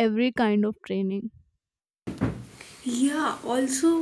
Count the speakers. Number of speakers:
2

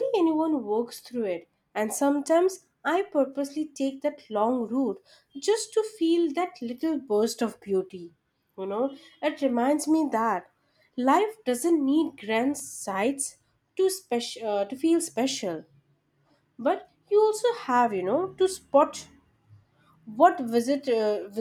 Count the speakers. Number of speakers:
1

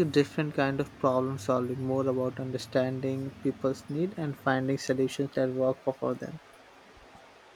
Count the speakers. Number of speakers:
1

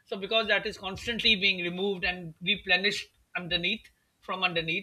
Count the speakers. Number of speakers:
1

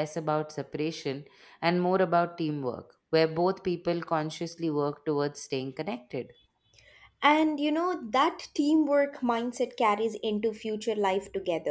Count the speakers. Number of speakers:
2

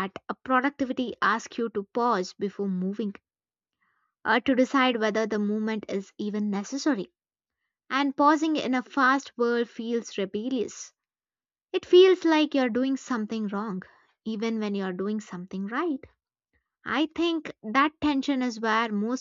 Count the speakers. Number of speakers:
1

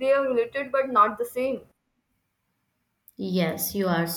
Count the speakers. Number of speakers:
2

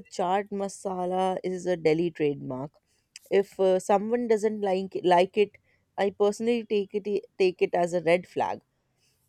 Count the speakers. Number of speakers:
1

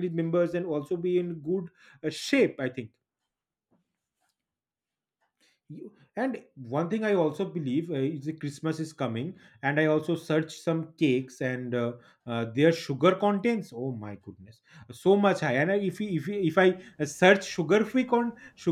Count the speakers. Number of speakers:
1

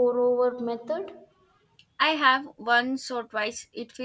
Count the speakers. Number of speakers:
2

